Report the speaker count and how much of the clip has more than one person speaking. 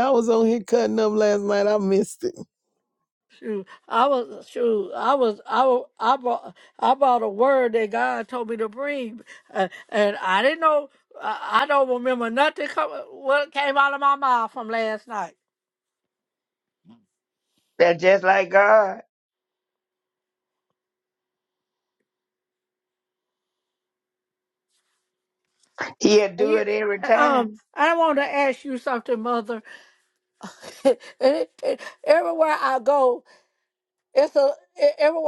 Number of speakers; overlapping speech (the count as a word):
three, about 2%